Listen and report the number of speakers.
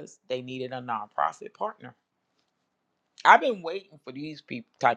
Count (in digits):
1